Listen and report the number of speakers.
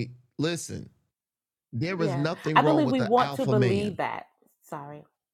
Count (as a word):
two